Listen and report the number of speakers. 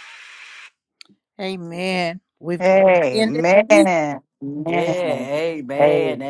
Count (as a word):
three